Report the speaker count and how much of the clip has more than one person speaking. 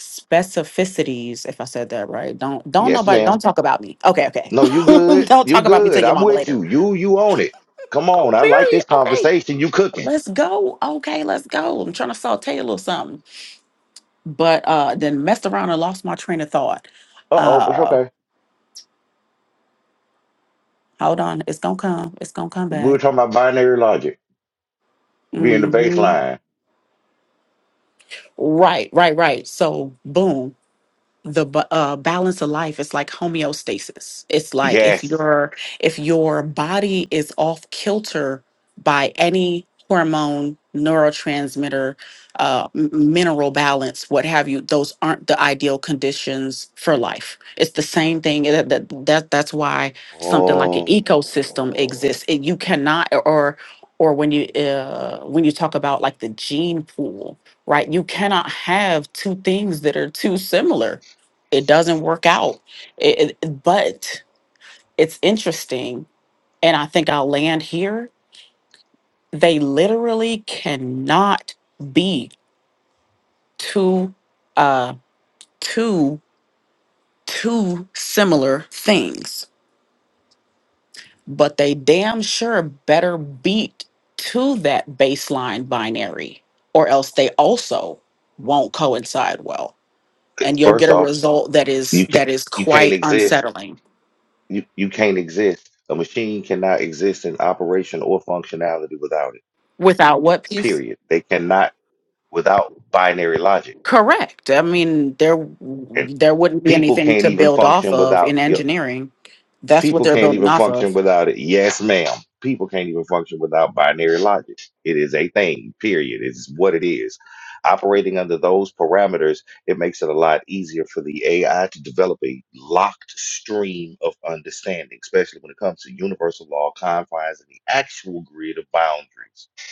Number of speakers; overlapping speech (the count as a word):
two, about 8%